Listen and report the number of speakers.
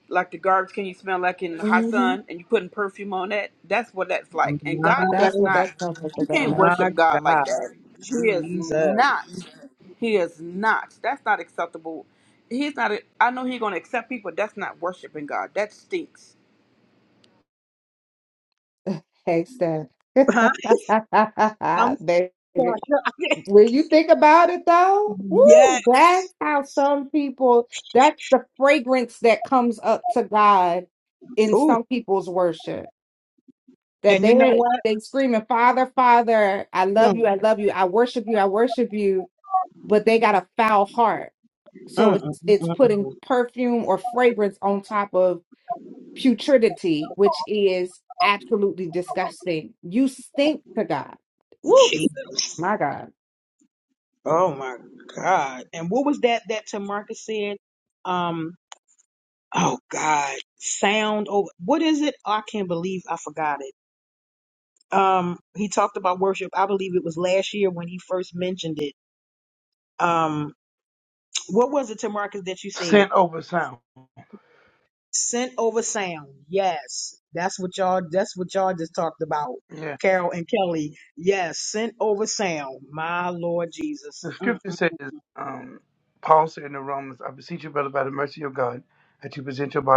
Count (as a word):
four